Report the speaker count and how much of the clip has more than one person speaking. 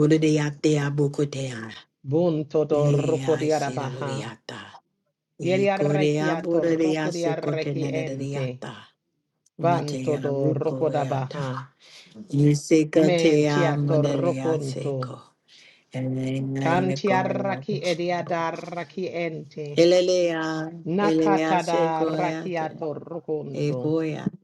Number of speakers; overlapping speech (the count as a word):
two, about 44%